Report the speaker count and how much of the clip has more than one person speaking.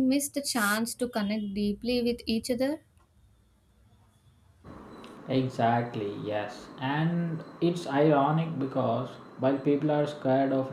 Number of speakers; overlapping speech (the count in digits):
2, no overlap